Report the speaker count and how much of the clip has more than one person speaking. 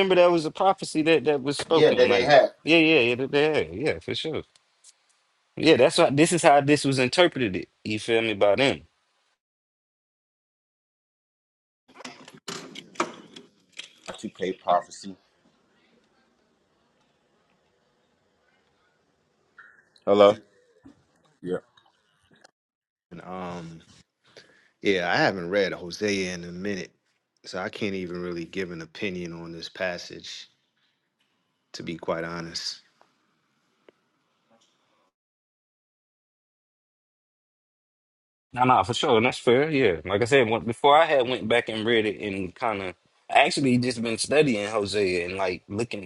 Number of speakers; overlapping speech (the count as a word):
three, about 1%